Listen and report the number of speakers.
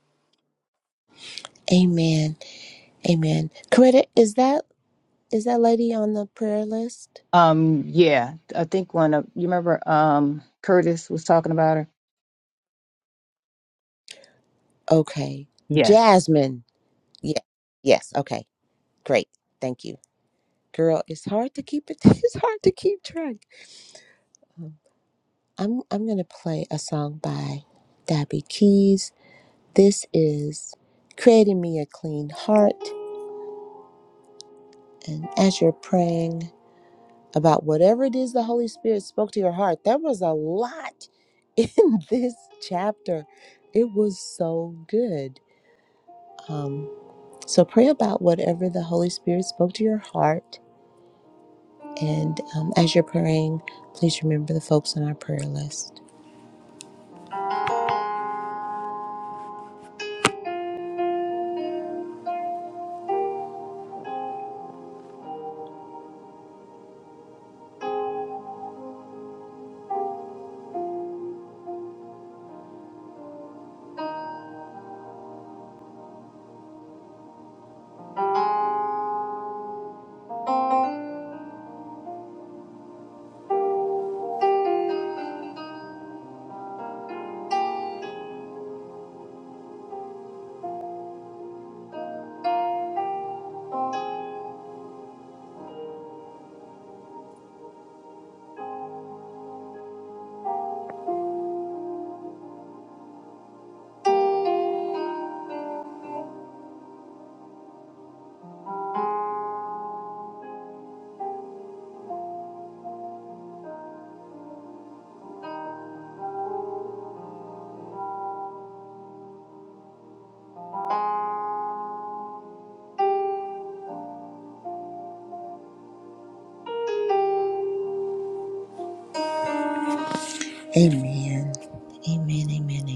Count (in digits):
2